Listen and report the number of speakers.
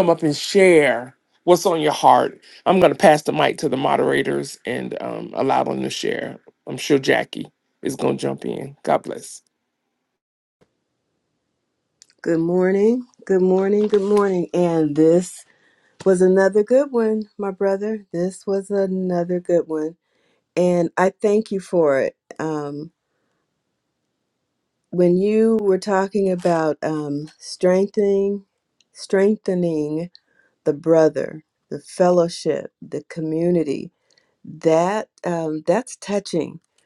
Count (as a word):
two